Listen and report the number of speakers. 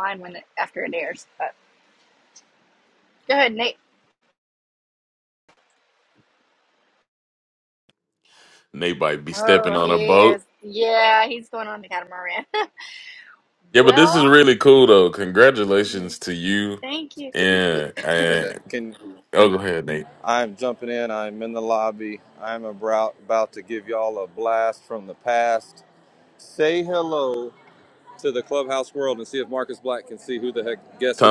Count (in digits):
3